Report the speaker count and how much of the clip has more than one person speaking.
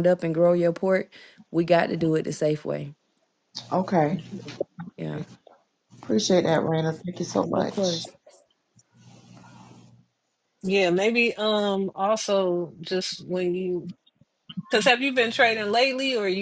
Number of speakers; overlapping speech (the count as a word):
three, about 1%